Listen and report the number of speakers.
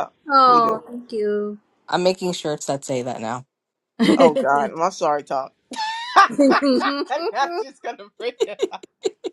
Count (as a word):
three